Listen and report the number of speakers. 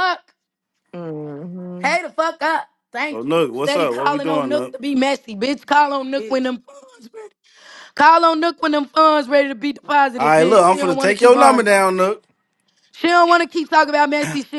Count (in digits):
3